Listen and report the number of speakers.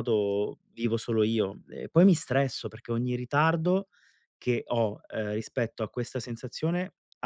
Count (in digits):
1